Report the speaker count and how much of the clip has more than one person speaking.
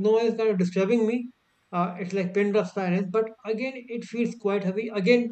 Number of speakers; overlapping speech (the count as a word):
one, no overlap